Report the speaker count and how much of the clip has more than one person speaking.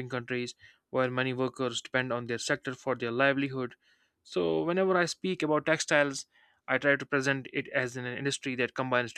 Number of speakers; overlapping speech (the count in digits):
1, no overlap